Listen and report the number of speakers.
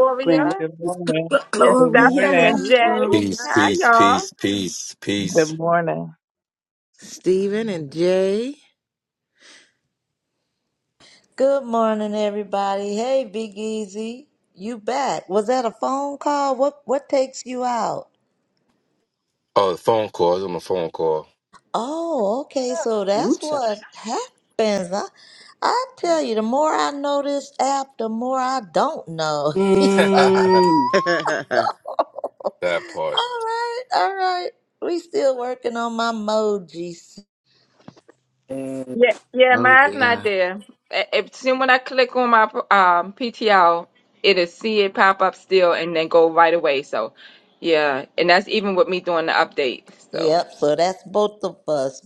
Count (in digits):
6